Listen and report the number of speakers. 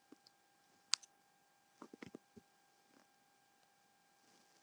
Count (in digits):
0